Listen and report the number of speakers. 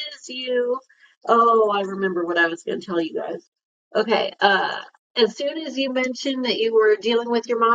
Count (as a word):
one